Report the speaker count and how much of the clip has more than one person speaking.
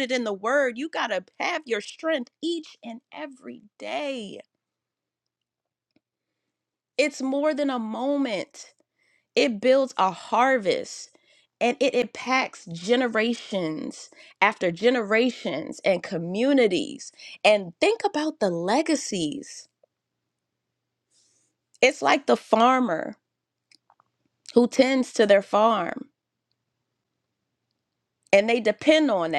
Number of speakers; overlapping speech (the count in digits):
1, no overlap